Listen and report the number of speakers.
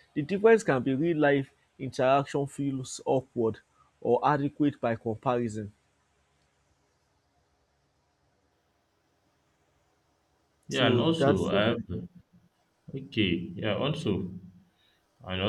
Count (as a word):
two